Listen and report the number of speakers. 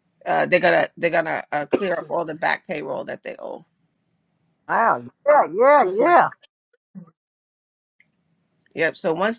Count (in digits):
2